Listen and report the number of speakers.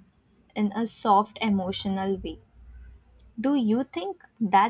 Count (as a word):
one